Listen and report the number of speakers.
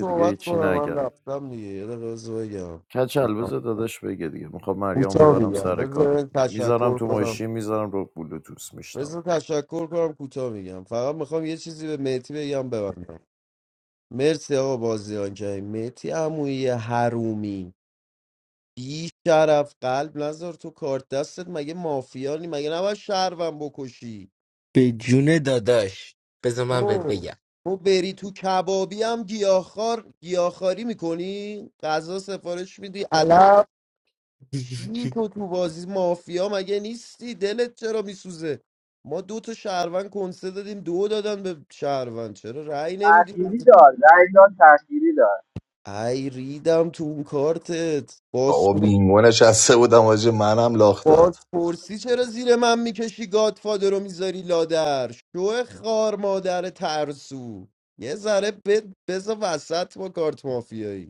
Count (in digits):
5